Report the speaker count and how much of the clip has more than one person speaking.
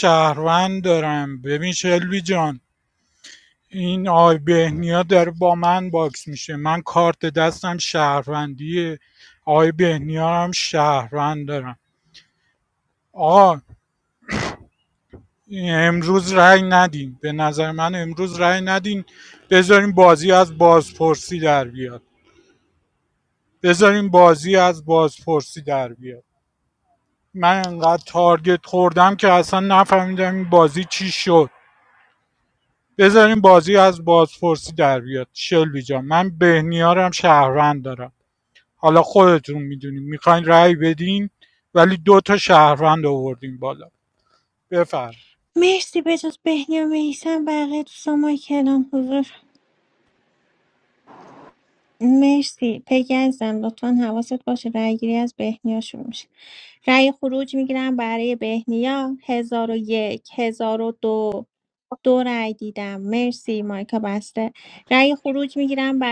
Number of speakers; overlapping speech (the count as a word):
two, no overlap